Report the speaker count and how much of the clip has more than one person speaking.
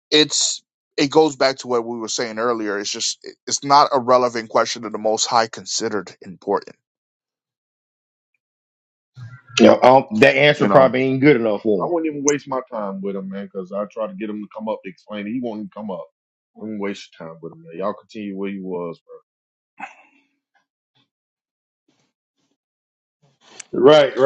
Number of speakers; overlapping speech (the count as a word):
three, about 2%